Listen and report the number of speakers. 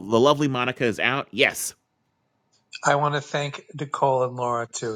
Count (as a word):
two